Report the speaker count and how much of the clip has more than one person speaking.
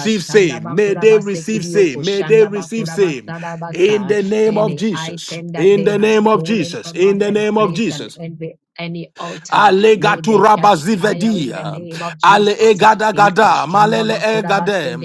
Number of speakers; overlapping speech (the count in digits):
2, about 78%